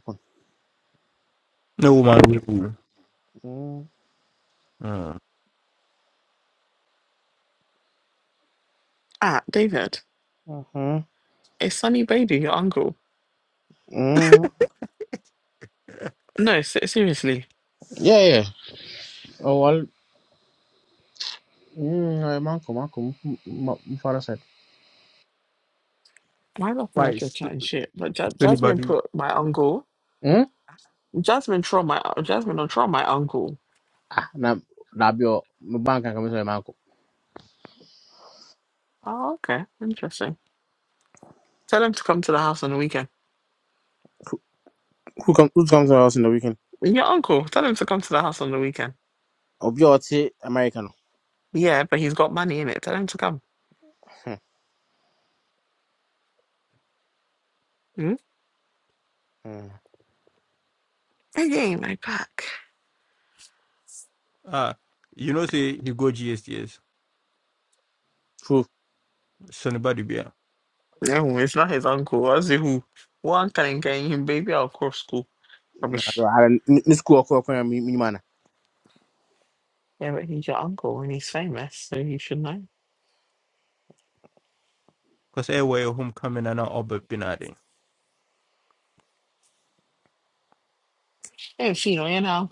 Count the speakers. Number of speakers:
3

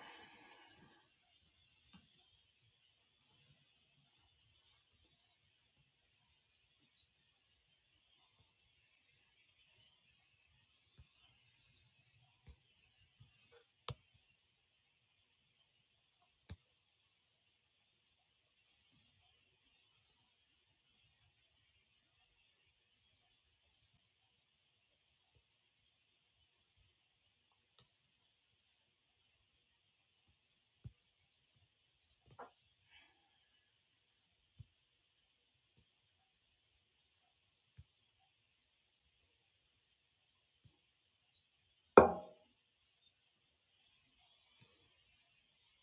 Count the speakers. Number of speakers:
0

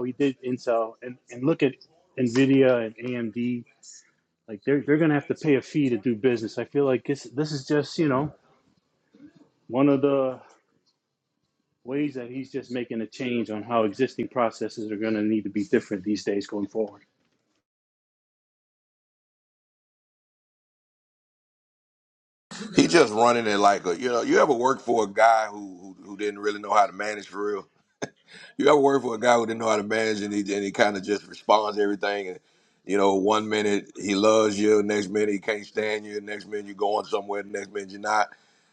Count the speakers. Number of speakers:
2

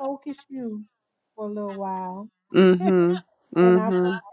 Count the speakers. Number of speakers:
2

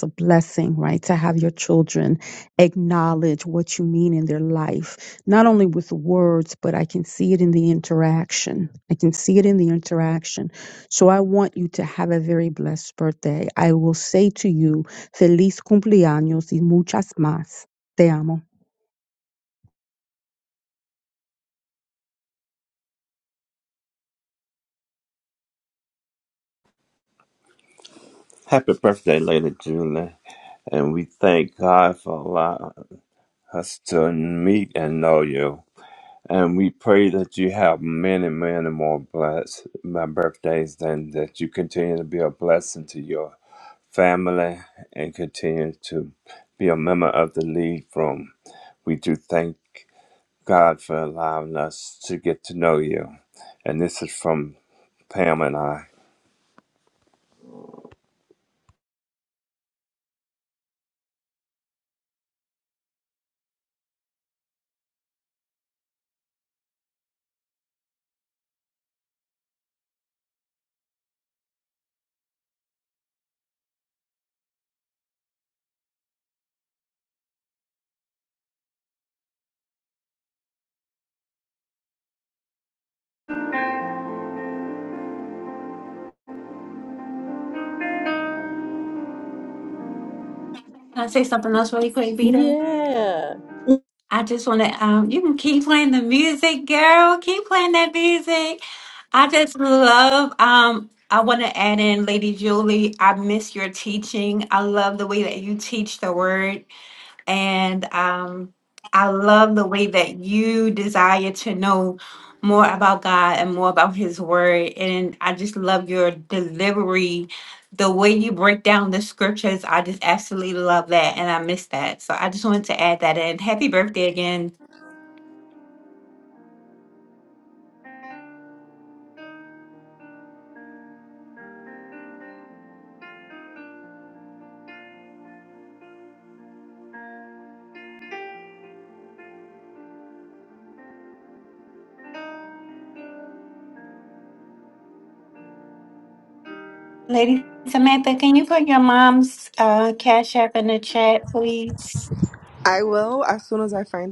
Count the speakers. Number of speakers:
5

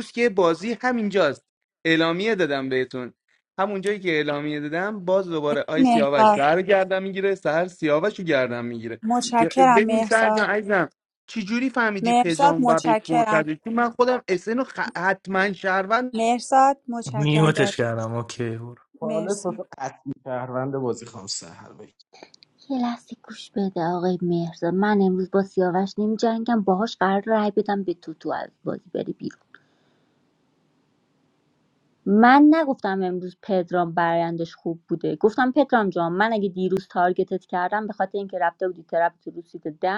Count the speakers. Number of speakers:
5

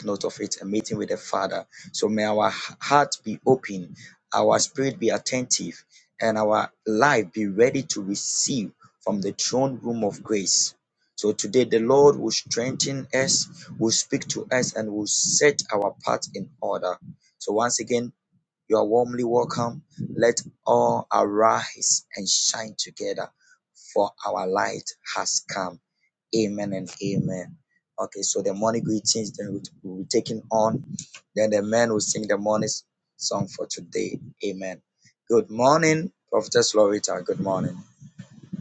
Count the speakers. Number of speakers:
1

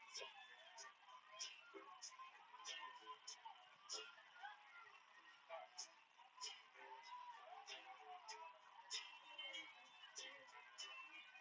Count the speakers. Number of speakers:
0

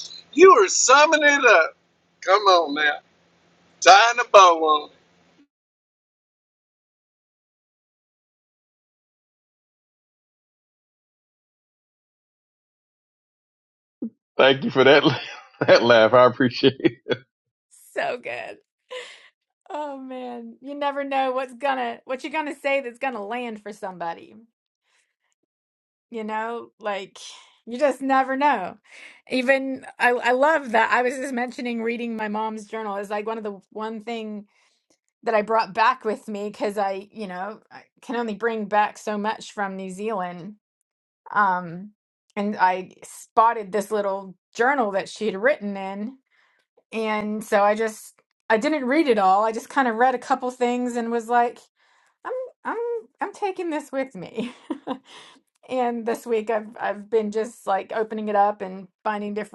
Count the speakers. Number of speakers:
3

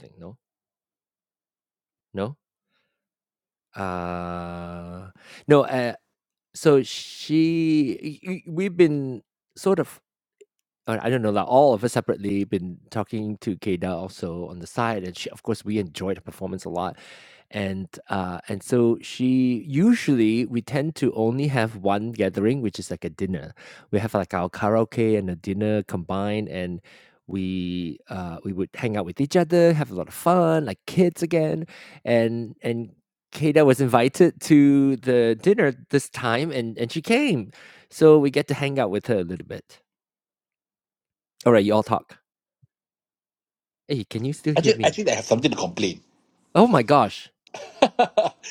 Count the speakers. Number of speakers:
2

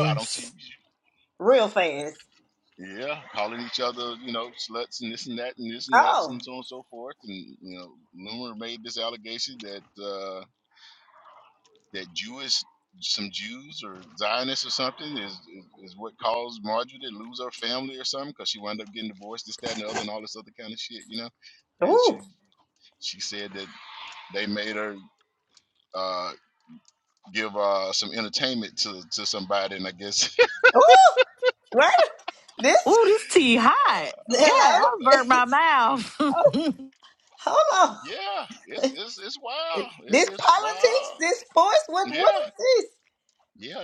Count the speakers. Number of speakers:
3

